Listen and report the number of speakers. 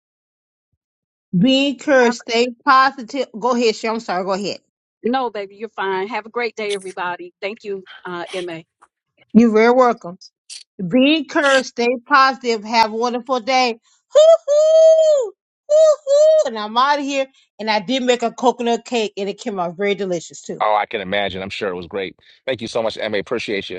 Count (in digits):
3